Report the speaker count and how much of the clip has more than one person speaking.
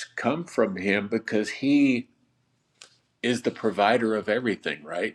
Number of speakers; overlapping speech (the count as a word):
one, no overlap